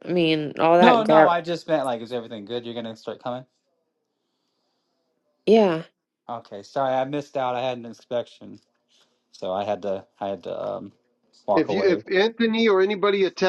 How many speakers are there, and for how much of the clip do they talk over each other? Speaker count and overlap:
three, about 7%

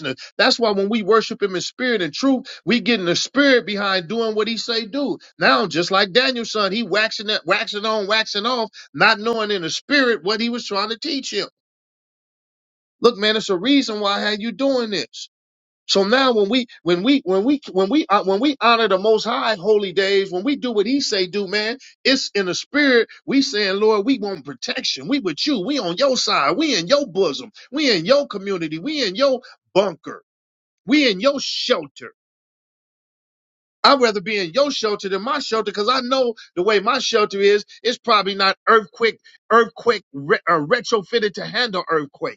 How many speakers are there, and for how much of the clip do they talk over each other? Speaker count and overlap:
one, no overlap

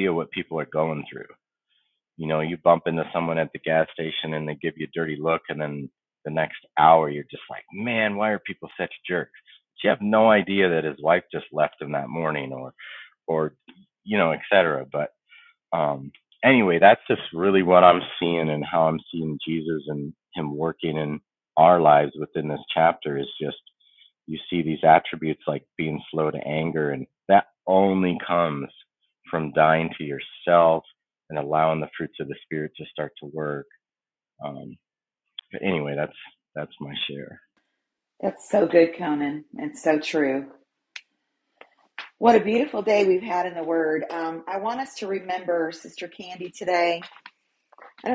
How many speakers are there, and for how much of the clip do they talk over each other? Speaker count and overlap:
two, no overlap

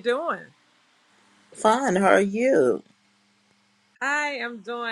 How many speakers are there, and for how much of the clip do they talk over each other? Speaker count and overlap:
two, no overlap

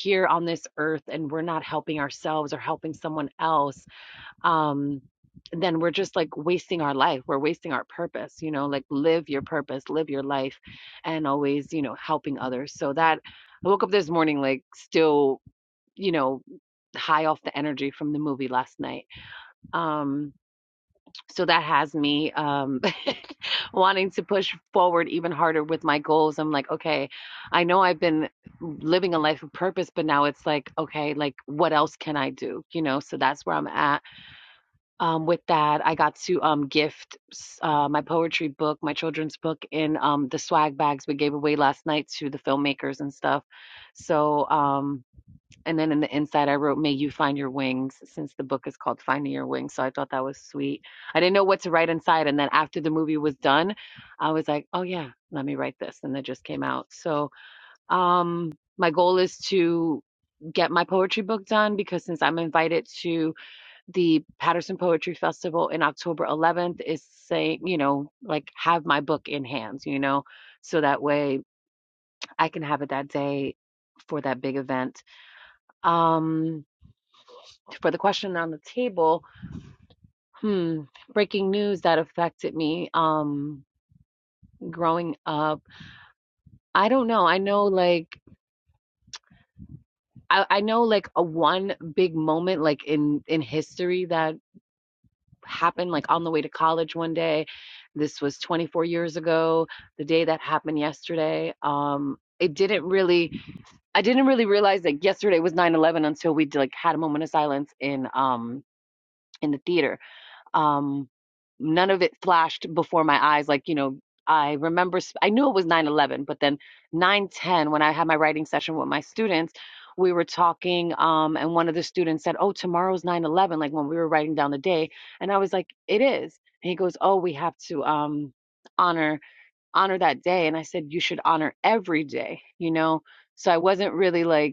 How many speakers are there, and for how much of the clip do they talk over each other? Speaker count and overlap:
one, no overlap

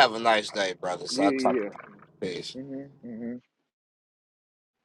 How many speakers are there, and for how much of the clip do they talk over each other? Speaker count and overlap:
two, about 12%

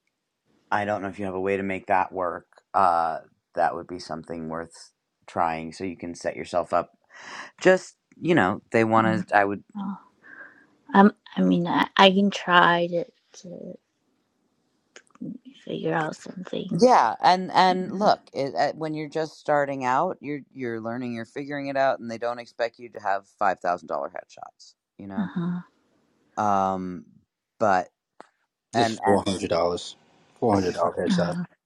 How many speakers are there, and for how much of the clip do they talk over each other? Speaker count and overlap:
three, about 3%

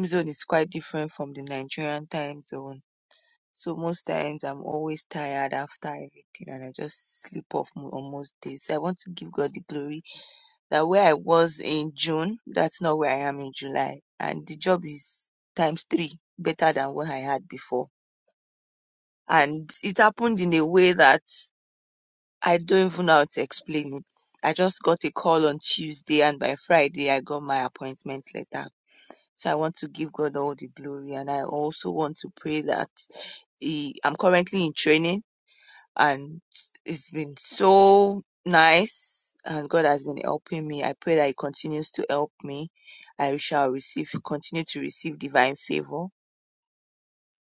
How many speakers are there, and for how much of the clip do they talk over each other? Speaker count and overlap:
one, no overlap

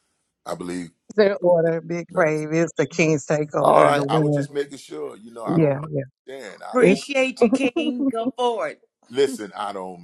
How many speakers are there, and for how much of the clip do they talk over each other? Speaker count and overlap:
three, about 17%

